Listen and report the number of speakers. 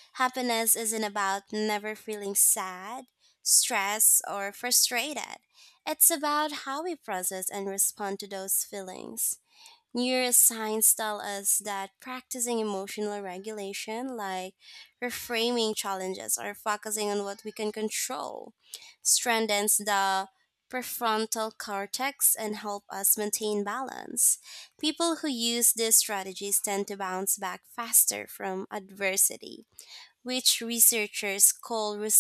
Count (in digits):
1